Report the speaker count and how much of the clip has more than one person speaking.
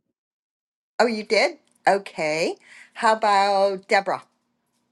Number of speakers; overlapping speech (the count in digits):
1, no overlap